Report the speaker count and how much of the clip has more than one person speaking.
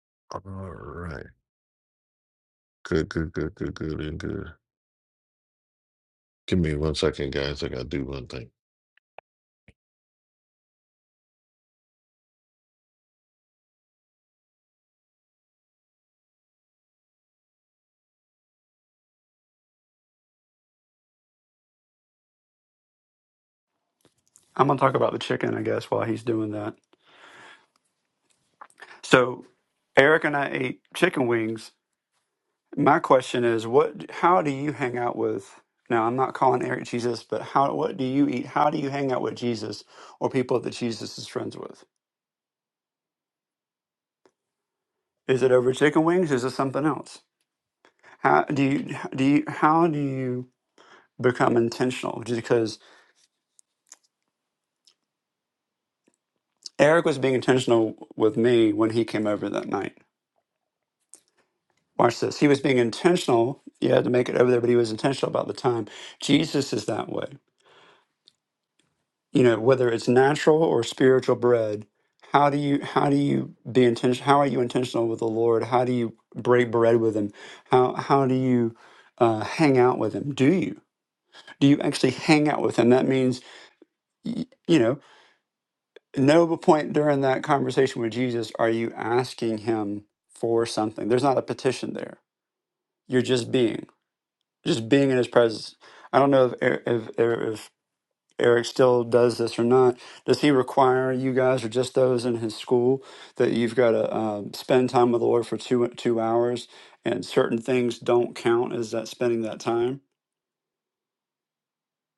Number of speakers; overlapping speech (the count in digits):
2, no overlap